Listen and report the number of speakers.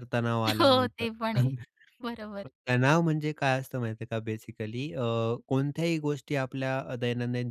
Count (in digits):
2